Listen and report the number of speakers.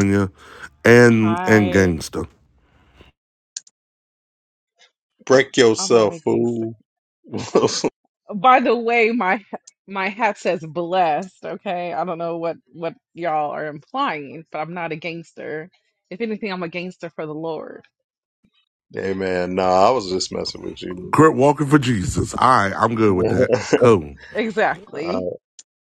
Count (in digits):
3